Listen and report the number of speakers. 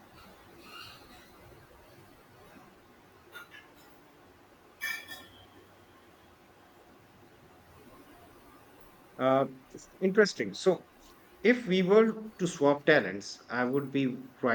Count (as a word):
one